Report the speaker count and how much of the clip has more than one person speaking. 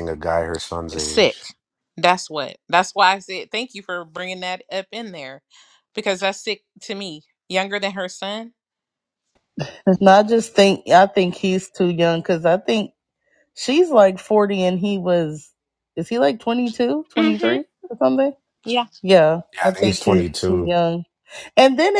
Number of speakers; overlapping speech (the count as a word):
three, about 10%